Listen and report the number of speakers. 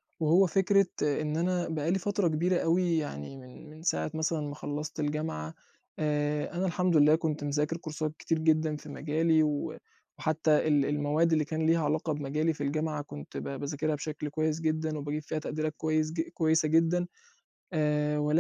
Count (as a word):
one